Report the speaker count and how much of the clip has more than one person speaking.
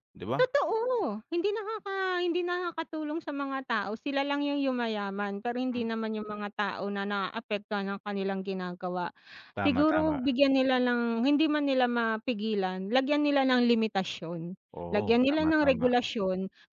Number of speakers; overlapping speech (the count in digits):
2, about 11%